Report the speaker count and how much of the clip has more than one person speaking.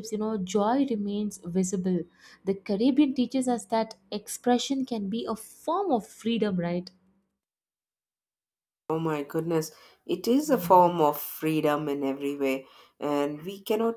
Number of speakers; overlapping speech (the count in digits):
2, no overlap